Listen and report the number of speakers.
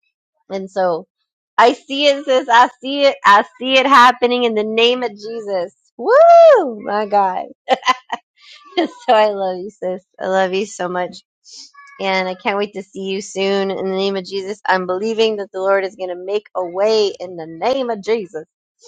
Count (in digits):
1